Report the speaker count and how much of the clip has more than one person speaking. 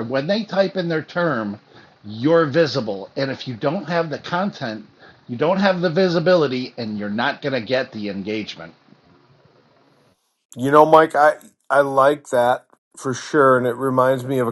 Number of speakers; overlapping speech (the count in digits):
2, no overlap